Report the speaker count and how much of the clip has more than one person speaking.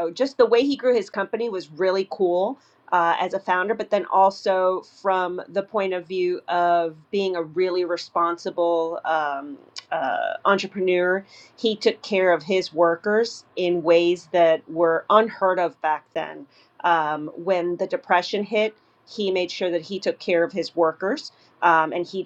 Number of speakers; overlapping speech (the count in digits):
1, no overlap